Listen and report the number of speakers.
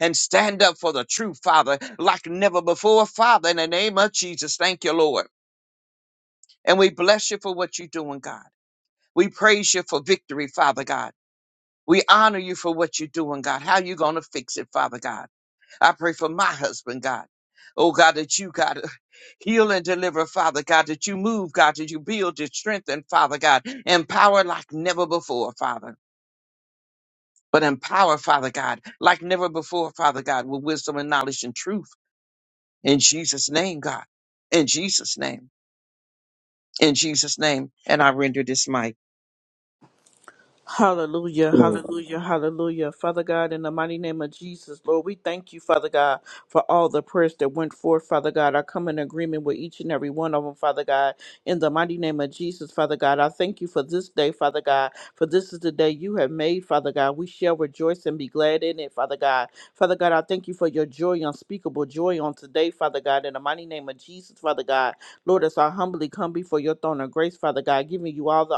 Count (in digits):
2